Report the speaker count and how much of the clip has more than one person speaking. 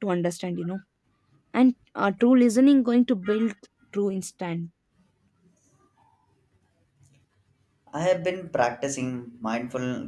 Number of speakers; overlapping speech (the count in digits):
2, no overlap